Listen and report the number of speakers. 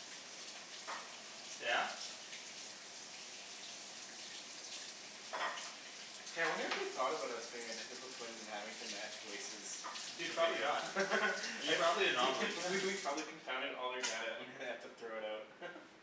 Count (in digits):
2